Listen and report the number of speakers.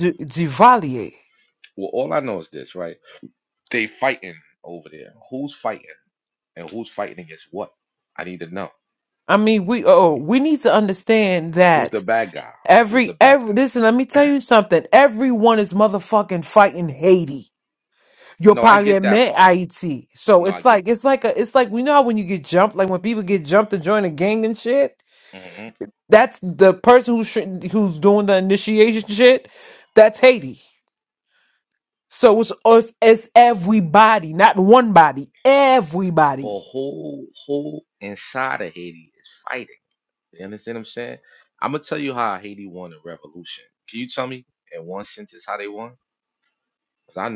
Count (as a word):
two